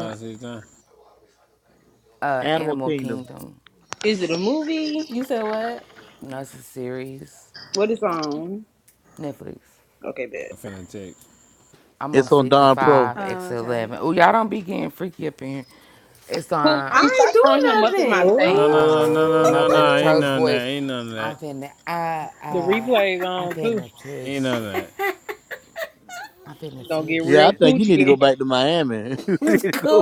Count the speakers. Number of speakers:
6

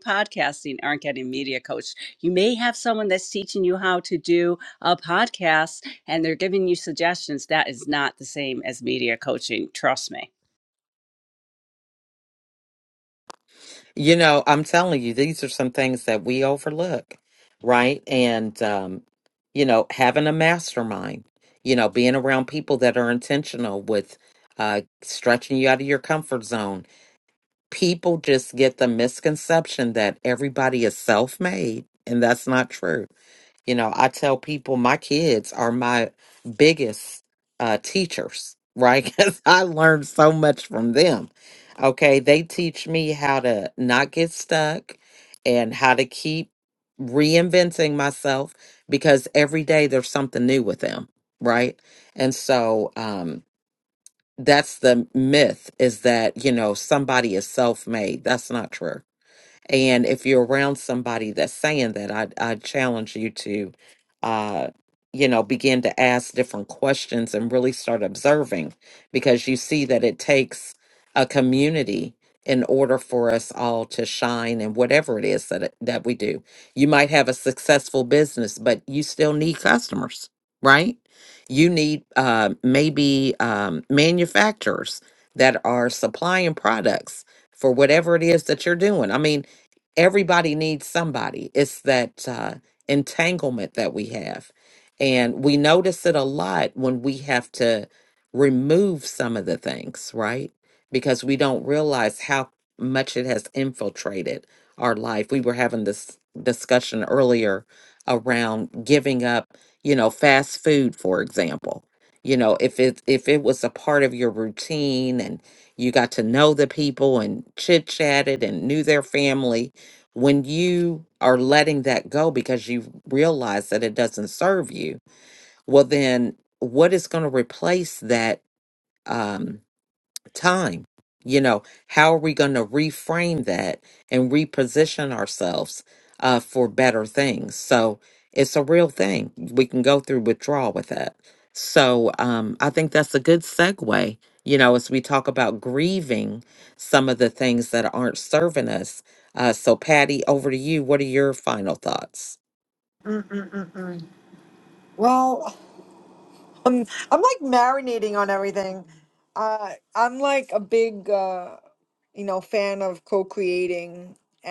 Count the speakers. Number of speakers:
3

